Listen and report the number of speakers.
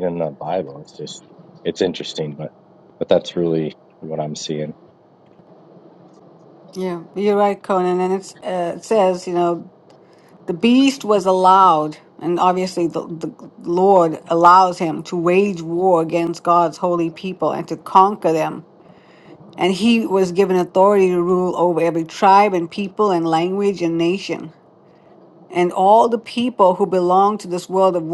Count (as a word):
two